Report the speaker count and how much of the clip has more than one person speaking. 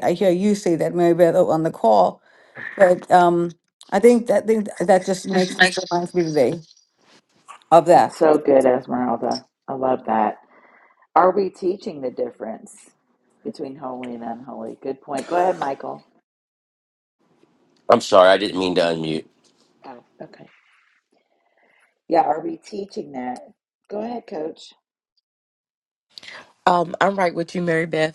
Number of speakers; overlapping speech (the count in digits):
4, about 2%